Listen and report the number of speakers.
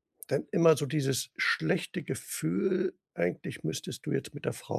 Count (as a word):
one